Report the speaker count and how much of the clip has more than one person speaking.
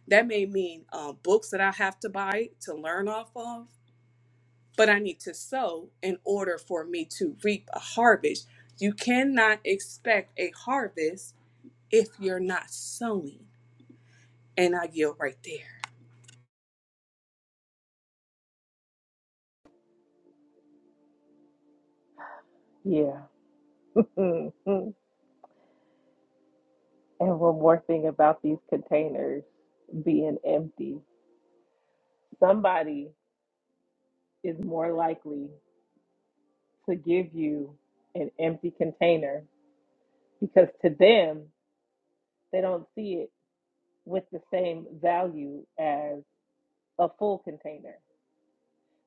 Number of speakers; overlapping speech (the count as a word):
two, no overlap